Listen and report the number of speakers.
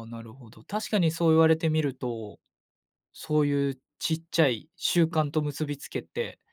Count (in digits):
1